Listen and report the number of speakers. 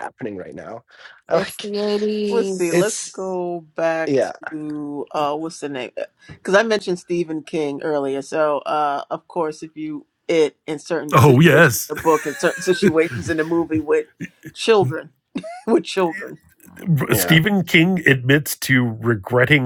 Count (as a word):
four